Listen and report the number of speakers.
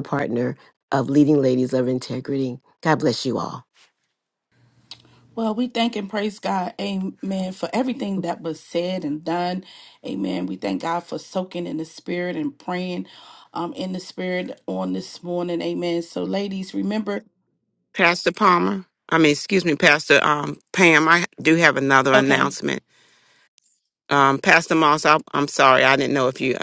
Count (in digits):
3